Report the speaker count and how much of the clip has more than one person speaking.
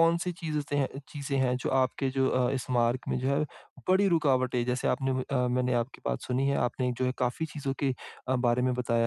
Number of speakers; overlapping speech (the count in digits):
1, no overlap